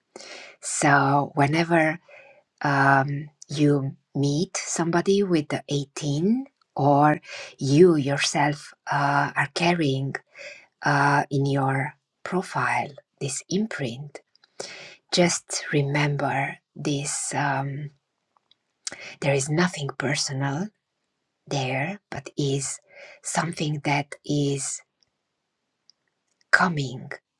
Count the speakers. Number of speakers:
one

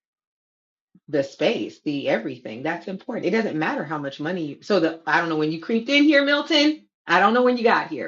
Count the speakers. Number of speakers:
one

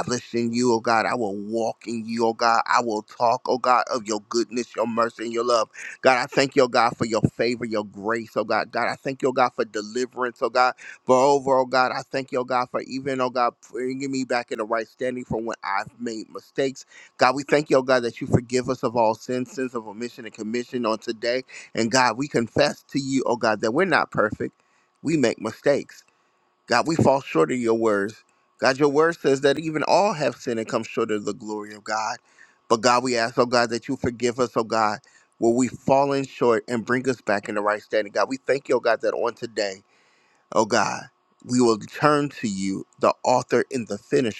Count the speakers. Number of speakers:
one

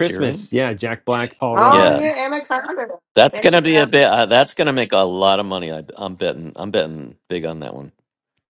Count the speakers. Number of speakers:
three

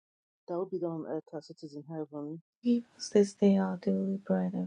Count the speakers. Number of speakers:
two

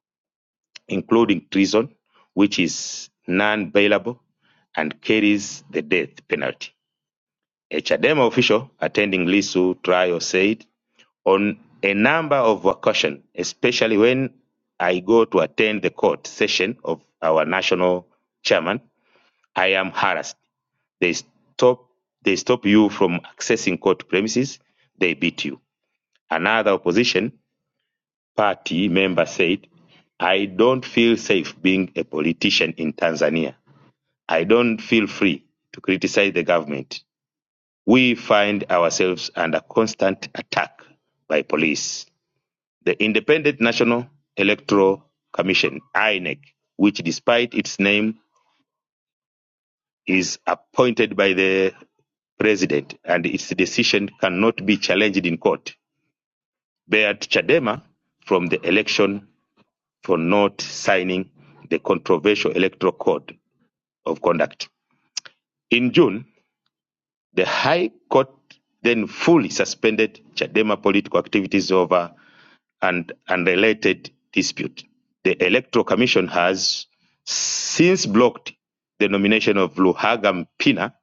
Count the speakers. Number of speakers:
one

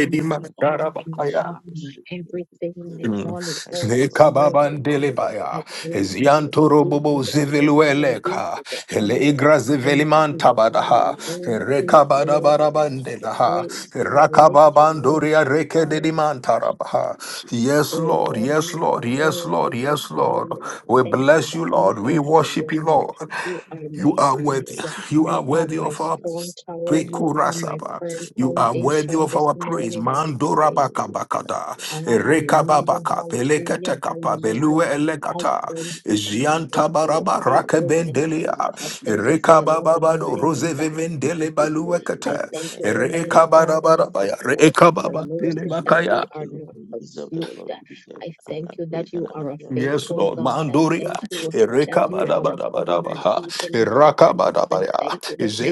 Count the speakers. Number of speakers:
three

